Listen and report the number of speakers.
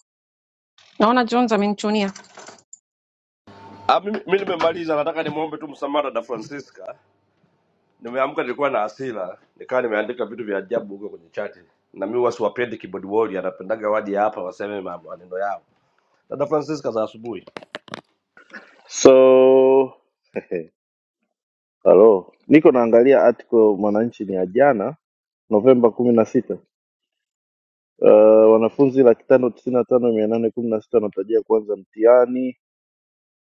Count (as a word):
three